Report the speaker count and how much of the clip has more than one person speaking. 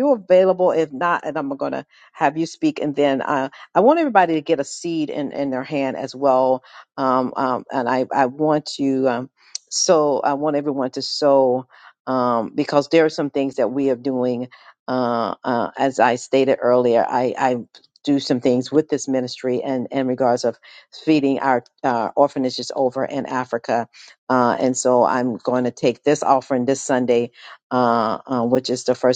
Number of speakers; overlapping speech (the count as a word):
one, no overlap